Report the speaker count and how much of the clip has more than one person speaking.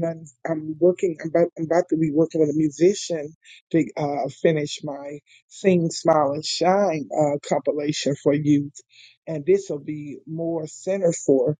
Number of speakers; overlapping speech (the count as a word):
one, no overlap